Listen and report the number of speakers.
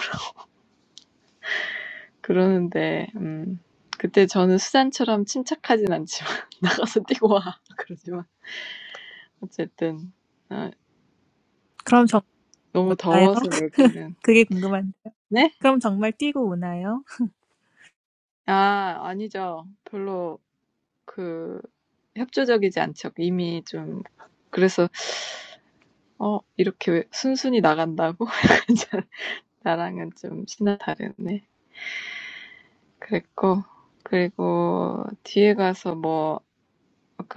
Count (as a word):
two